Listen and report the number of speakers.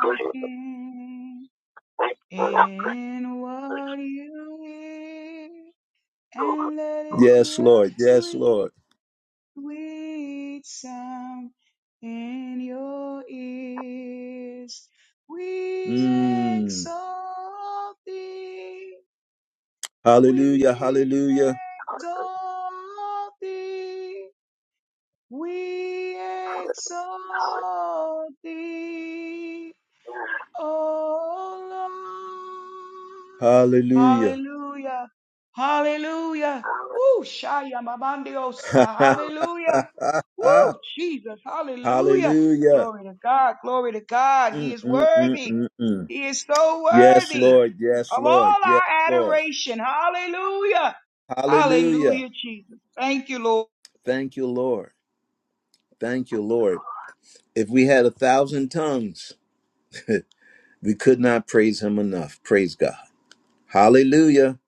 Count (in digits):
2